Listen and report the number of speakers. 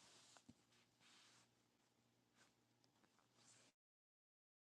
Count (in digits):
0